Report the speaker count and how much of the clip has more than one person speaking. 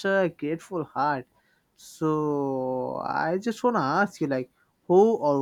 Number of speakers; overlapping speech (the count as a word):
one, no overlap